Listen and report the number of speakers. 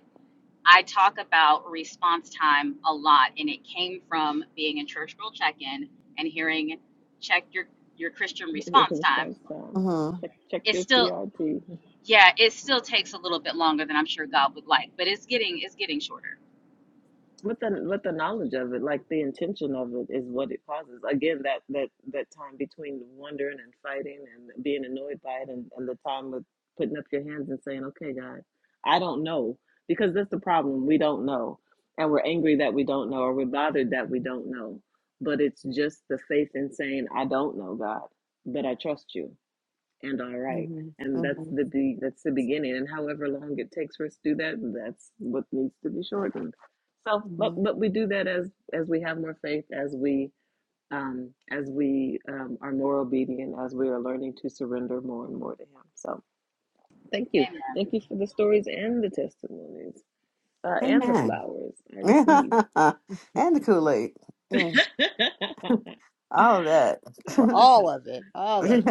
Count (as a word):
four